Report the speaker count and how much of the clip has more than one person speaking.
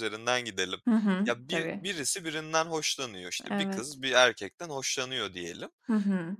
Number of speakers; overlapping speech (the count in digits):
2, about 14%